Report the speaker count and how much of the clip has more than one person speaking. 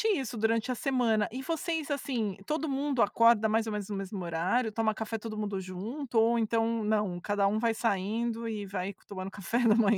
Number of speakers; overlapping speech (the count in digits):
1, no overlap